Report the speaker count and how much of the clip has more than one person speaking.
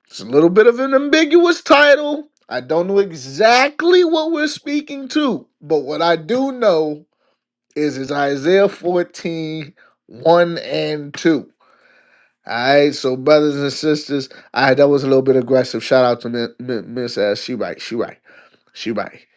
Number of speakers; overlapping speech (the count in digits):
1, no overlap